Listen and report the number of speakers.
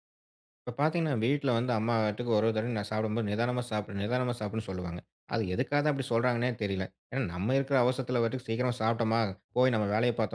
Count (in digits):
1